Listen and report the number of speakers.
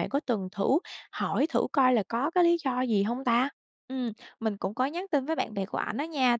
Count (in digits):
2